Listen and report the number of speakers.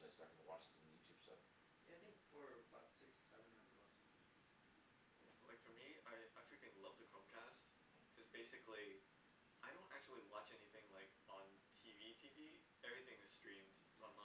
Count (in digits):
3